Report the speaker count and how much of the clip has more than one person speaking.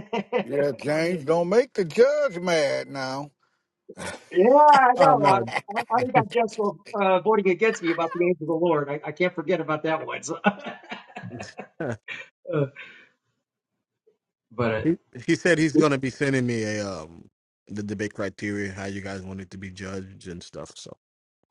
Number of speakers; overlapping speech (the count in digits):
3, about 4%